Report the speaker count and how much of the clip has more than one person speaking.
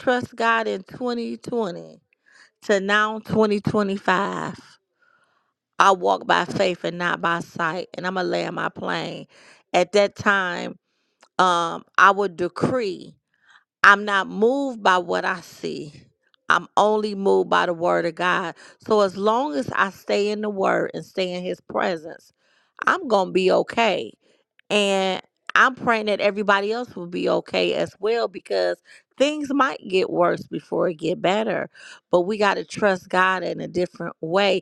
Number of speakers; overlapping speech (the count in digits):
1, no overlap